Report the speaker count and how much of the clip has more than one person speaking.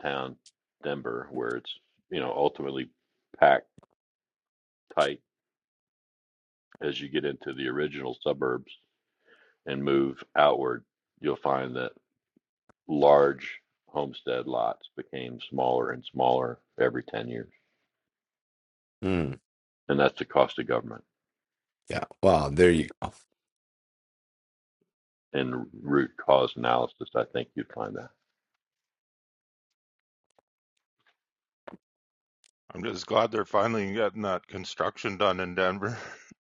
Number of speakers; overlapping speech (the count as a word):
three, no overlap